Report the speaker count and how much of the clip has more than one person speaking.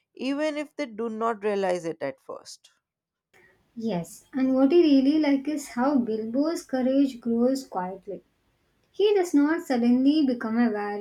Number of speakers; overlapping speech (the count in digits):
2, no overlap